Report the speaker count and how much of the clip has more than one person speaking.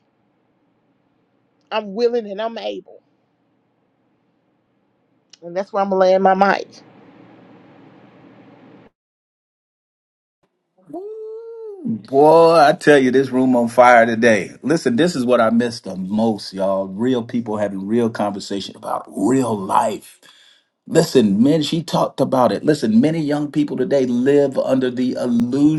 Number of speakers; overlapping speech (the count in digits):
2, no overlap